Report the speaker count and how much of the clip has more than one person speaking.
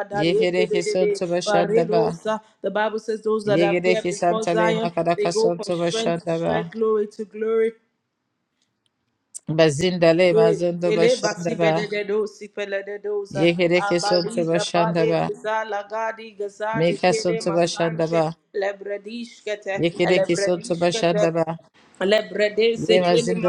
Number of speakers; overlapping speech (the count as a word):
two, about 43%